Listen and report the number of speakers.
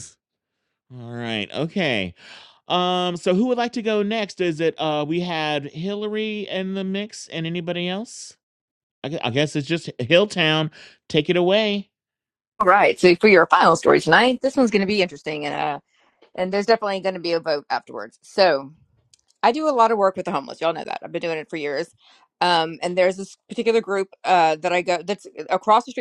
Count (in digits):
2